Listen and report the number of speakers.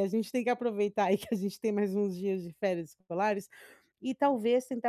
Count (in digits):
1